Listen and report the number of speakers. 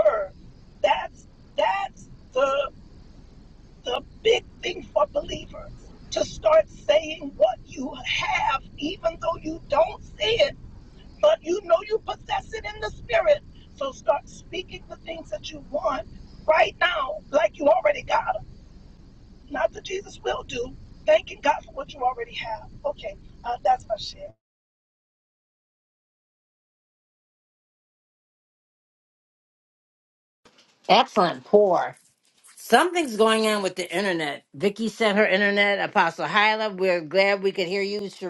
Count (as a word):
two